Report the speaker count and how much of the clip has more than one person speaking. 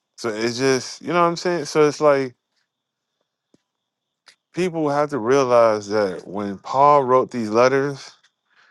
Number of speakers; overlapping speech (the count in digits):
1, no overlap